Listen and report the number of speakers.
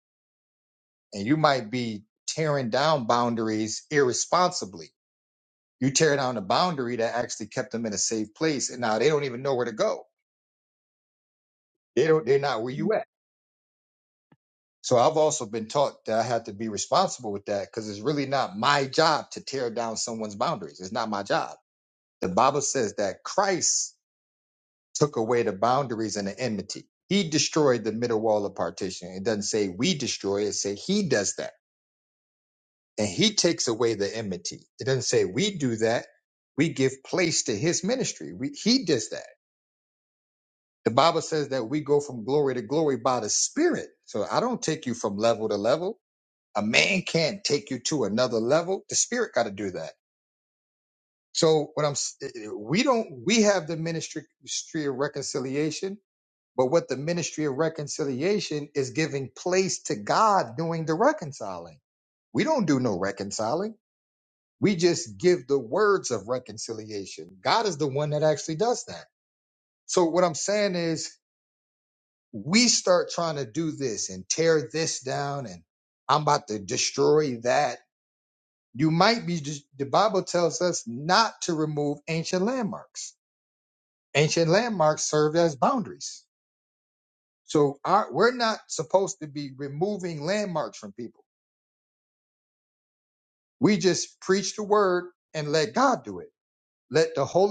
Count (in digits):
1